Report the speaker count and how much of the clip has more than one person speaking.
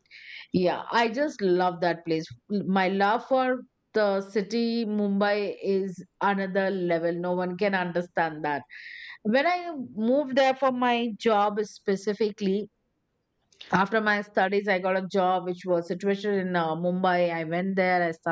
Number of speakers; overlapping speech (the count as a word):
one, no overlap